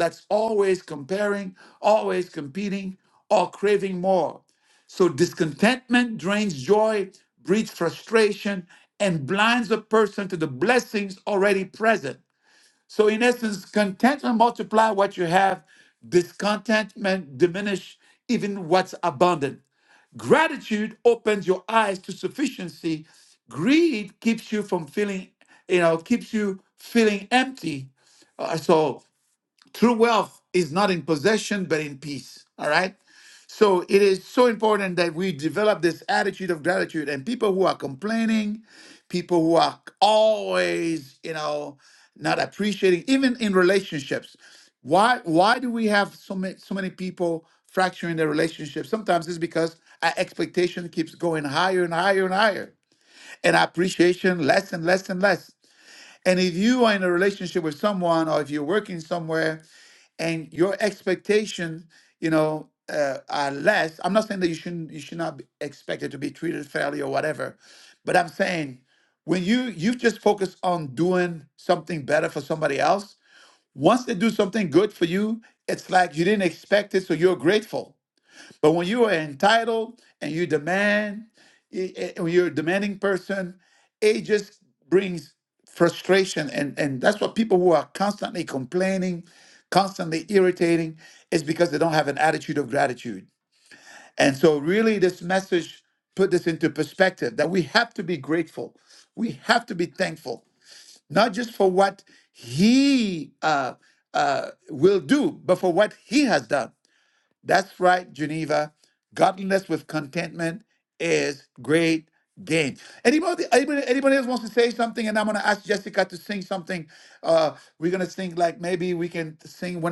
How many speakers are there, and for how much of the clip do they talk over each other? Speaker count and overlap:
one, no overlap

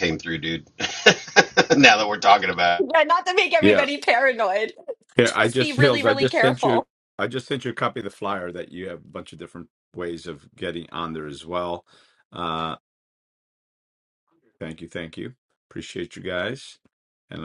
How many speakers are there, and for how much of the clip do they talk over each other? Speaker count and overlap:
three, about 10%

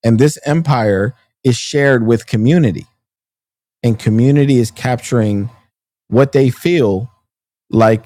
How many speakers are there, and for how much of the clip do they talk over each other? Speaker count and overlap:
one, no overlap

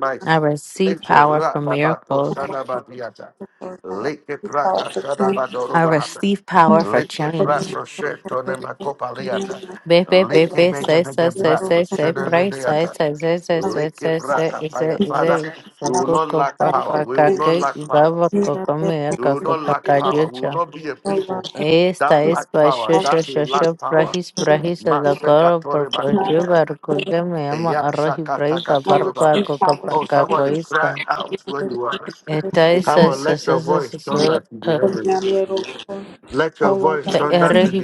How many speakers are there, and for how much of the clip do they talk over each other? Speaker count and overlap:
three, about 60%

